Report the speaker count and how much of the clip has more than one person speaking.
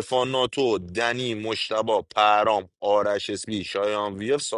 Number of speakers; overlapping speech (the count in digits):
1, no overlap